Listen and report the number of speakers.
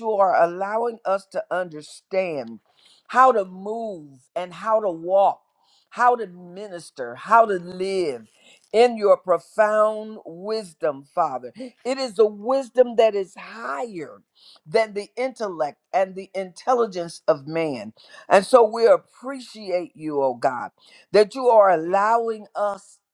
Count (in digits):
1